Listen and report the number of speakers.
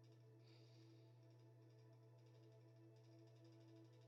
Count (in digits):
0